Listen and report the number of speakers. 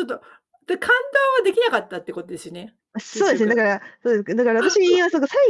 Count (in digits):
2